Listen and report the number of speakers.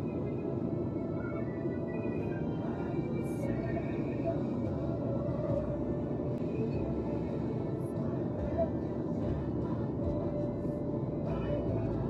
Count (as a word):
zero